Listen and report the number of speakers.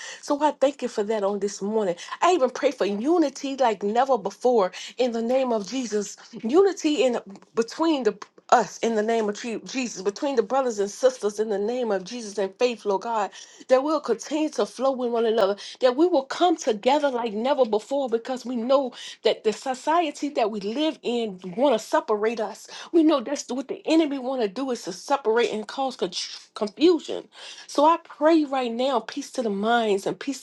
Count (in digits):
1